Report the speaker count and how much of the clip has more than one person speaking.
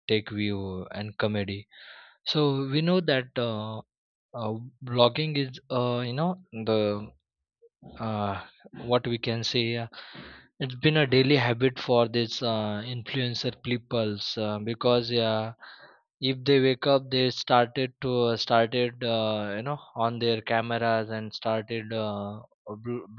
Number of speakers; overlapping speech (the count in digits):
1, no overlap